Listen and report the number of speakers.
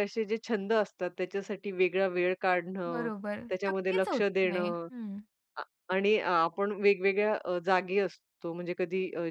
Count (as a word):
two